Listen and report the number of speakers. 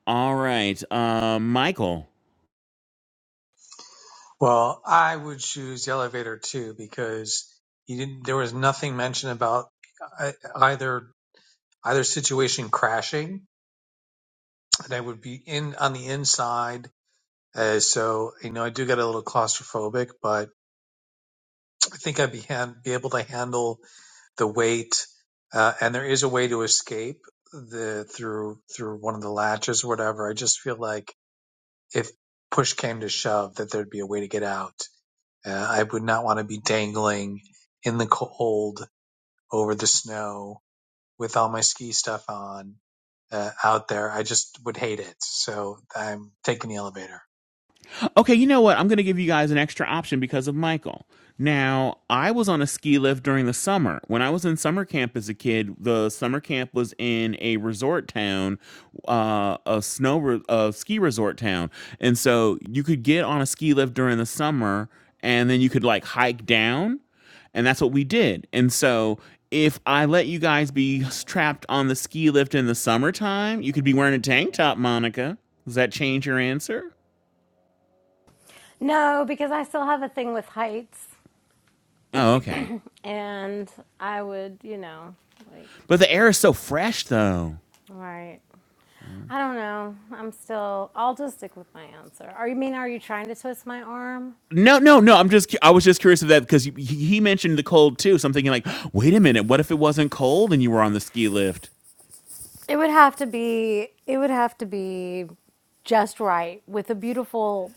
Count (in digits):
3